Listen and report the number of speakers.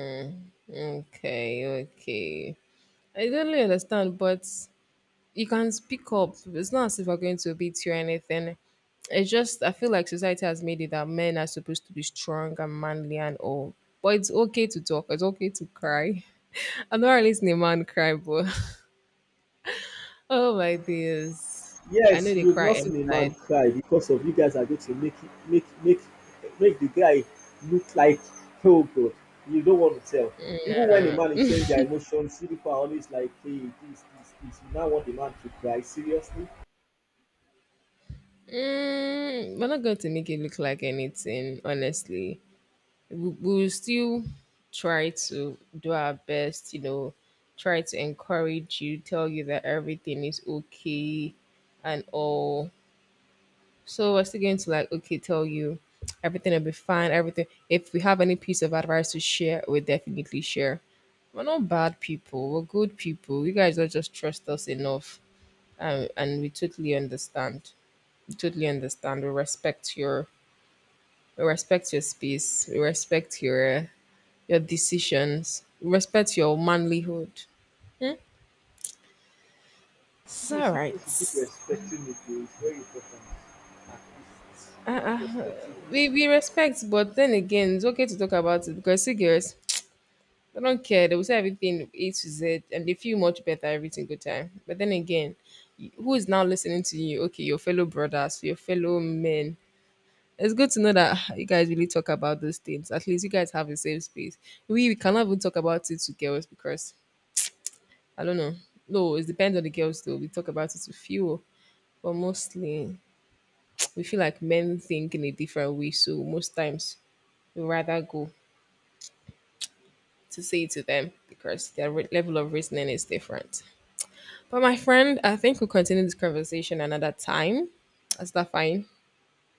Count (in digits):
2